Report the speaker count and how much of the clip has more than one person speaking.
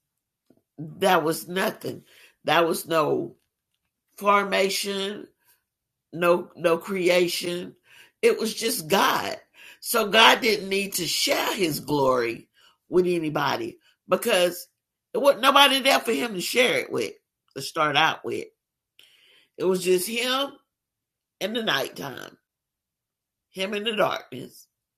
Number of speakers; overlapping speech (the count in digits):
1, no overlap